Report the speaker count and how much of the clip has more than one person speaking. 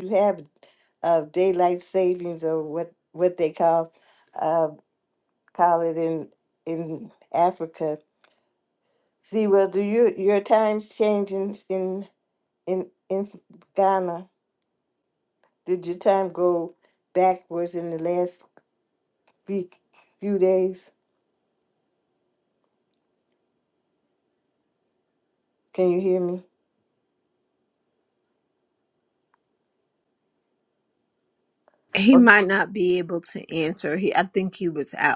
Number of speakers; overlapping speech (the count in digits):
2, no overlap